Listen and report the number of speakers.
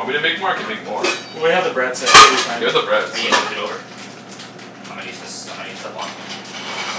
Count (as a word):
three